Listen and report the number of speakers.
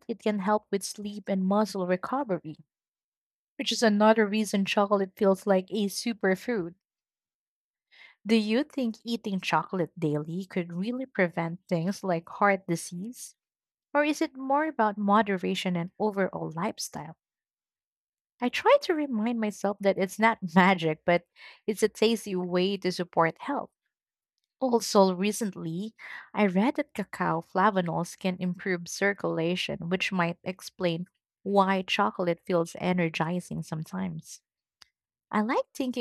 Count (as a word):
one